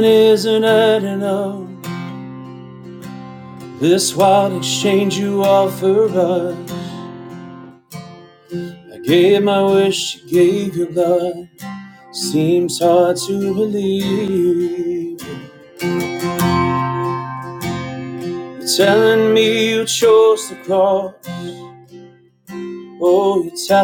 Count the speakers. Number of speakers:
1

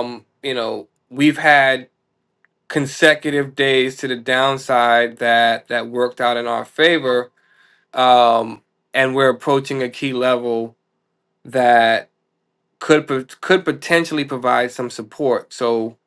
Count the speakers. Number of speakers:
1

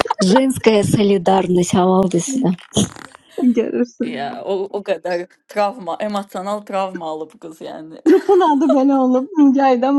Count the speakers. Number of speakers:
3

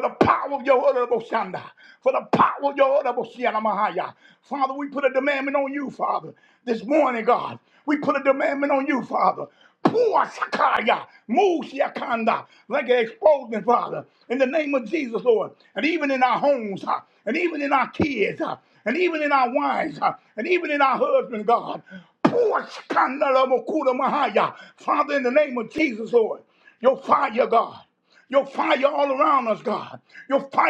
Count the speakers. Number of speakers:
1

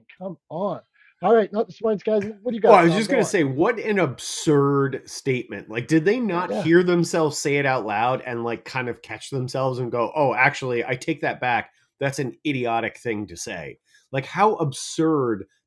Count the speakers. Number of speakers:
2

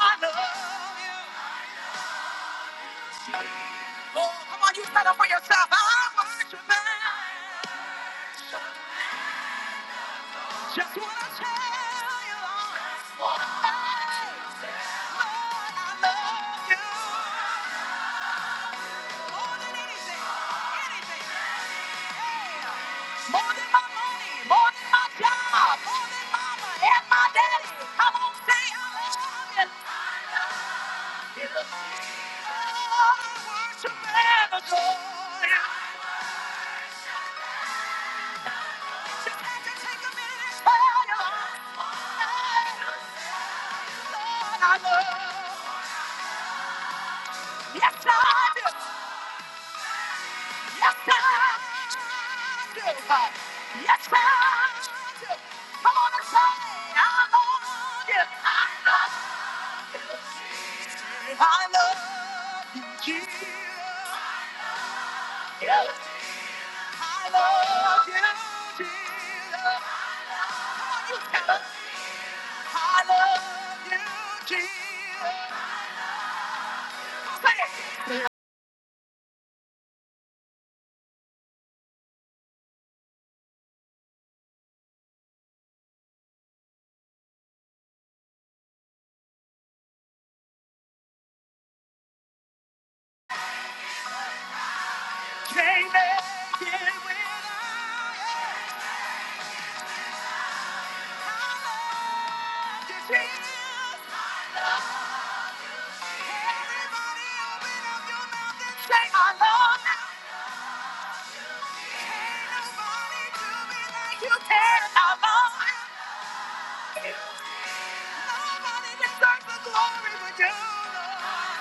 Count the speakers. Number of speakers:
1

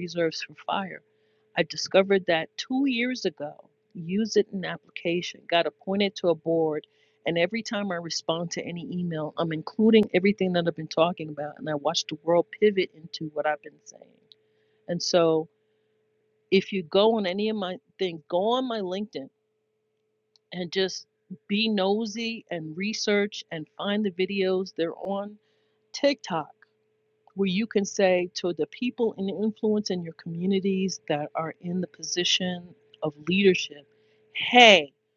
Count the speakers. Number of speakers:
1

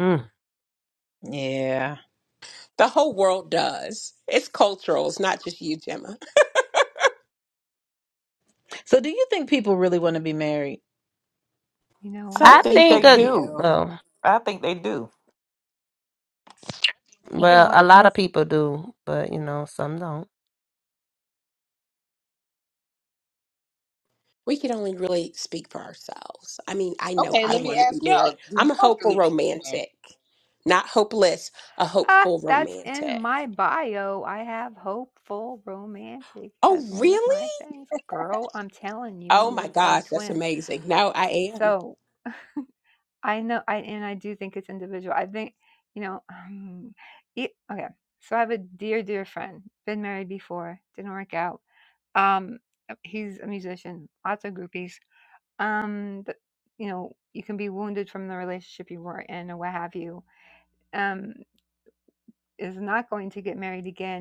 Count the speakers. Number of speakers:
5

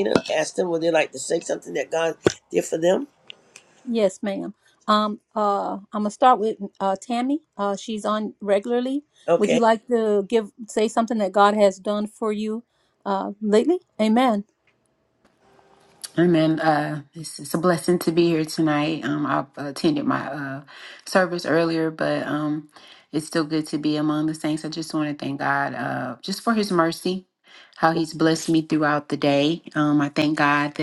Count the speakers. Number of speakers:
3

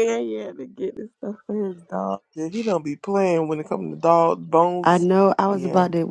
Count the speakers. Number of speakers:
3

